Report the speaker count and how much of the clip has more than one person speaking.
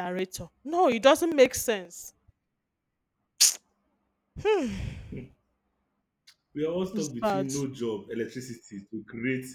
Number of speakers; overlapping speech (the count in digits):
2, about 5%